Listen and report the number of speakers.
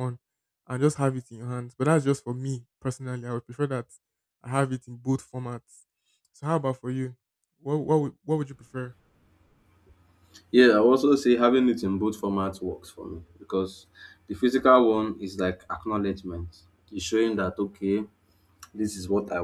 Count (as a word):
two